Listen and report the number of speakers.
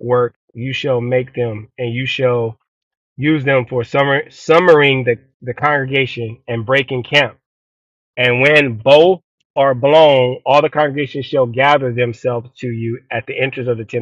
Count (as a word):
one